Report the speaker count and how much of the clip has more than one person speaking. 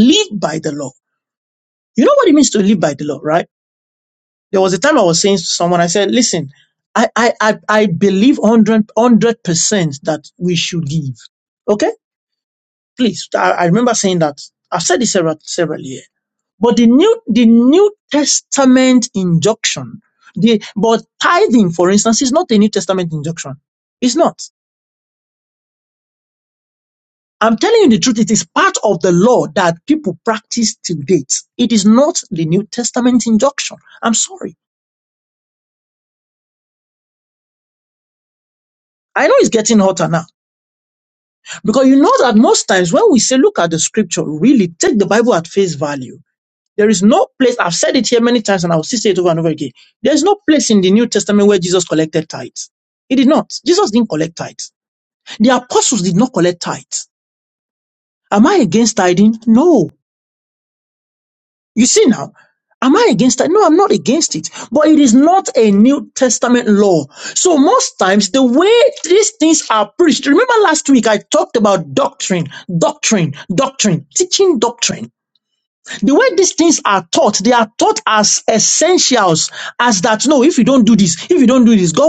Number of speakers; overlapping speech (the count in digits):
1, no overlap